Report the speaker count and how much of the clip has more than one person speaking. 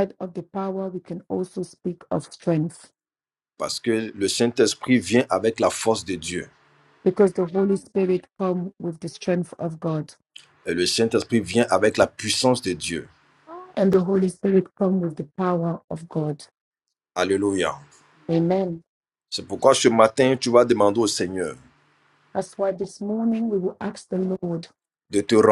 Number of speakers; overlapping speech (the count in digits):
2, no overlap